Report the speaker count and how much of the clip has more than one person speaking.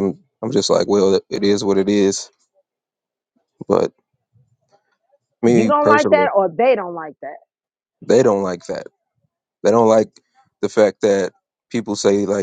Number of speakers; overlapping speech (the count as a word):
two, about 6%